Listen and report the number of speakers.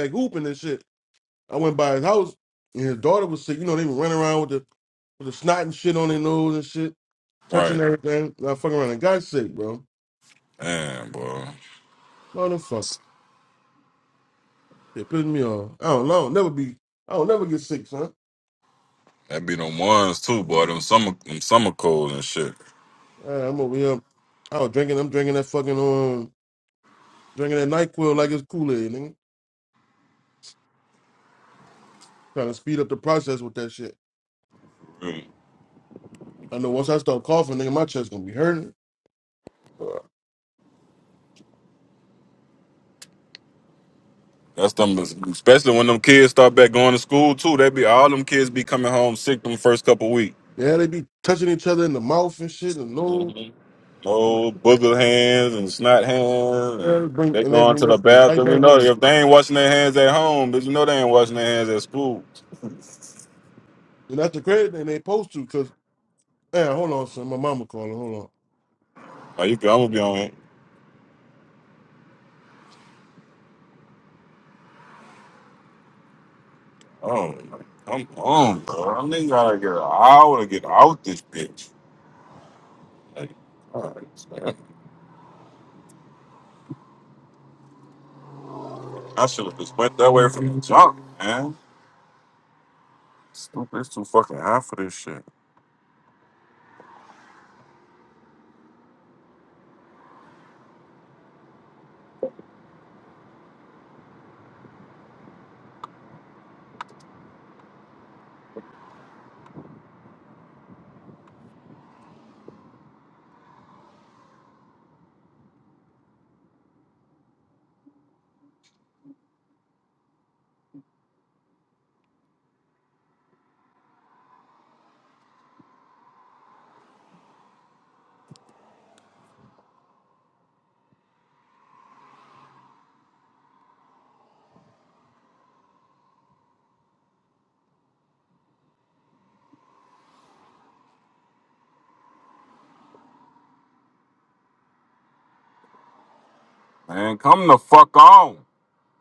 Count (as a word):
two